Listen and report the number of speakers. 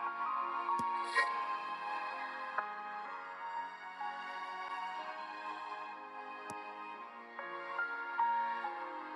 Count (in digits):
0